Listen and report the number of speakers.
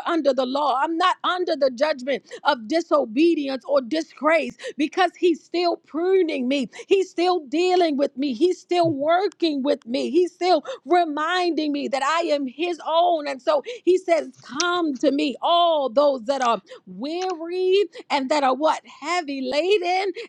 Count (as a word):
one